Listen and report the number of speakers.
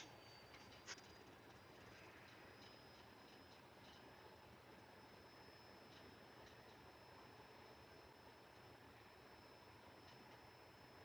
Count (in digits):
0